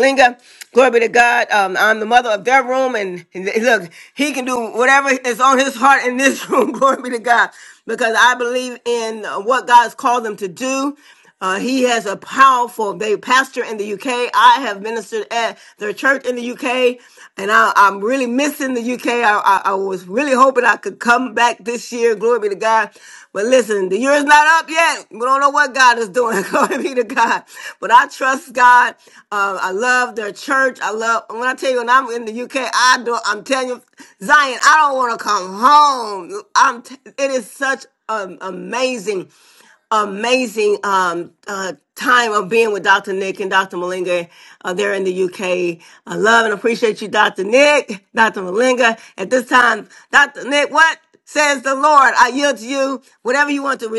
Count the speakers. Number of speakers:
one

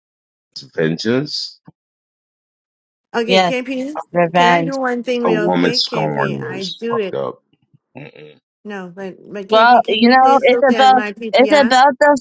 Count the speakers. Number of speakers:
three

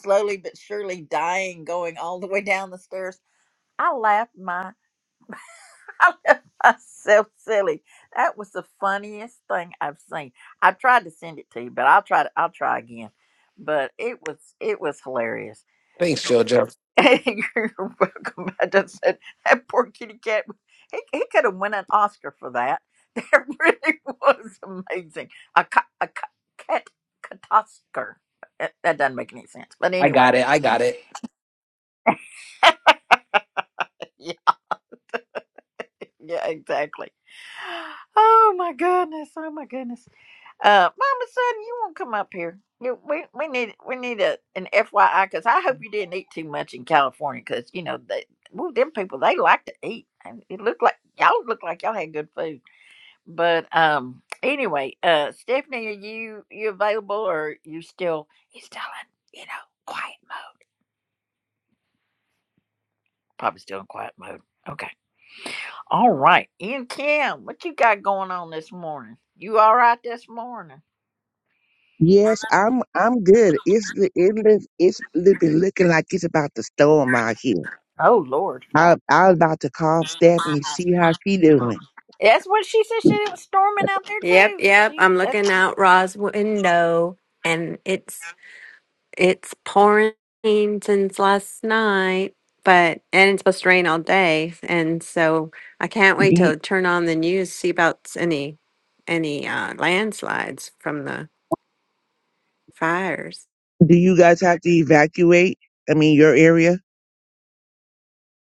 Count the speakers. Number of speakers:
four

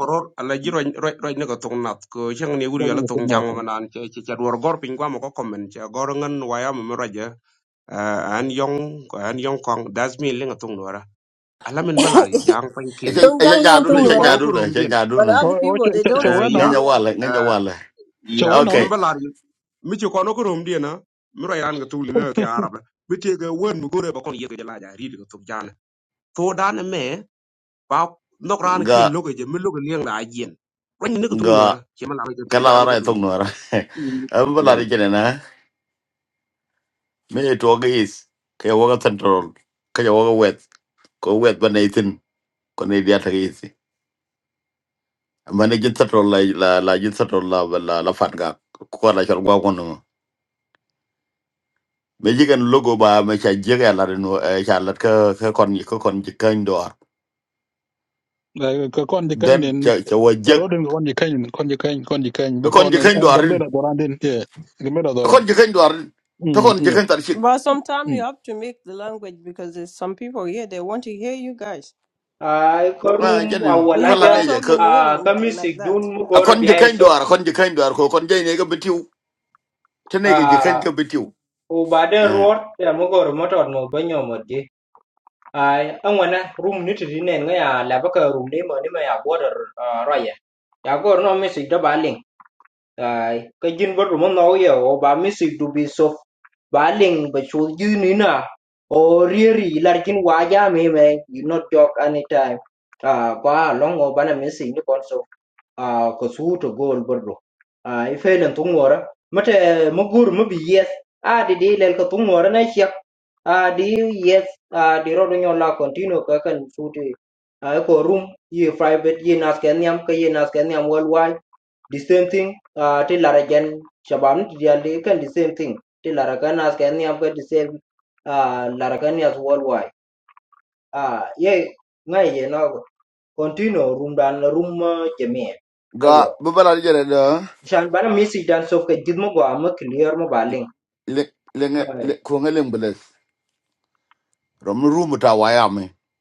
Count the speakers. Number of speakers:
five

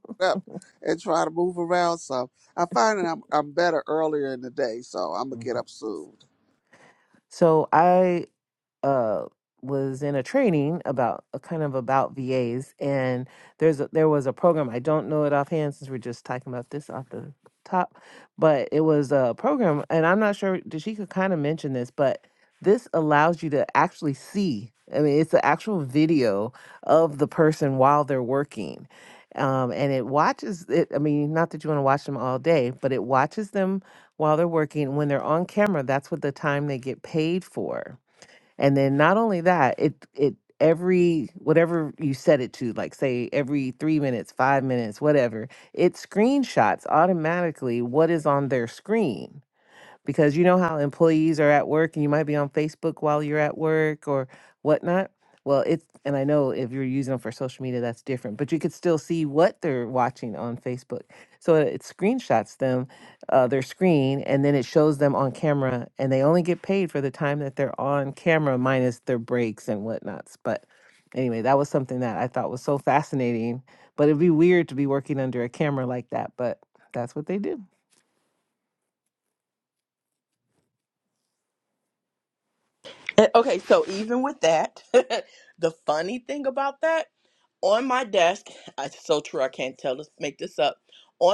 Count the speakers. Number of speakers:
three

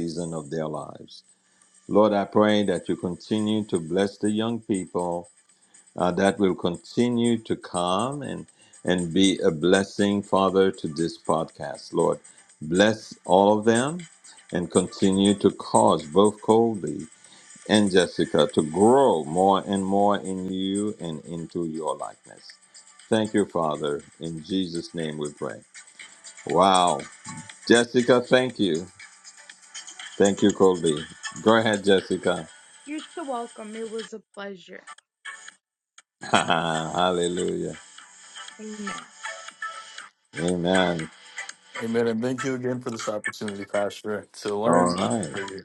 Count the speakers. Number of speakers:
three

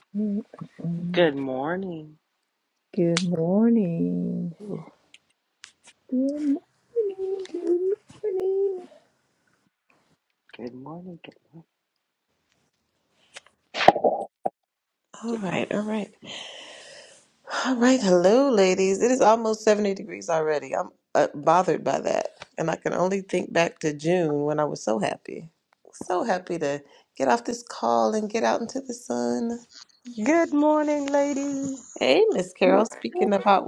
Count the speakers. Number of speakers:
four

